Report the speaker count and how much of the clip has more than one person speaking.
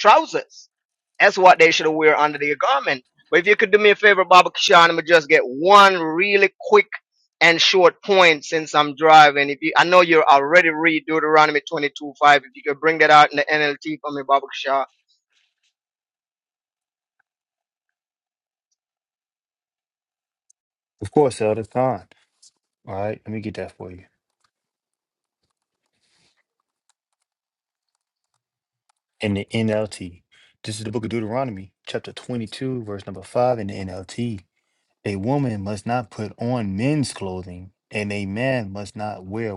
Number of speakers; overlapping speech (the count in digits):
2, no overlap